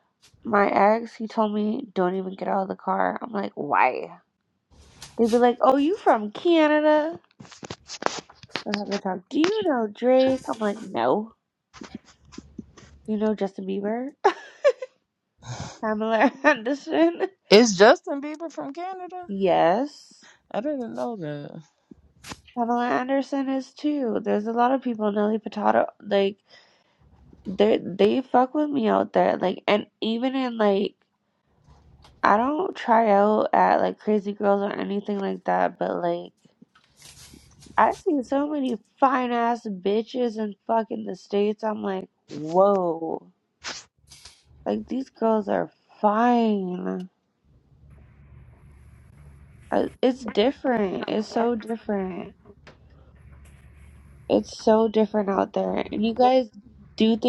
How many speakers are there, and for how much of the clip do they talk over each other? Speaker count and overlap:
2, no overlap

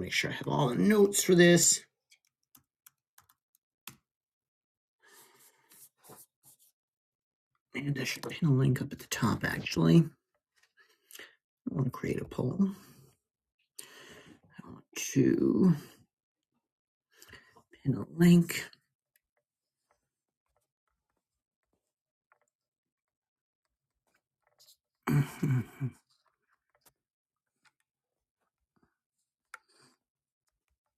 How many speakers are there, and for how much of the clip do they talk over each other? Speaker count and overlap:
1, no overlap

